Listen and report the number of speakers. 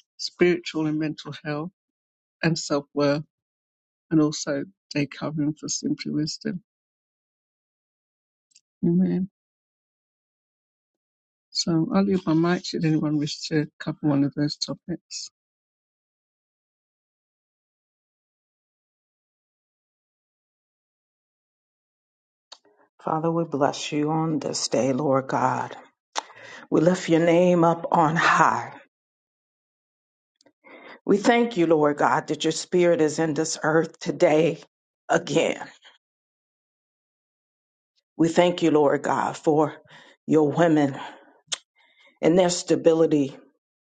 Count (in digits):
2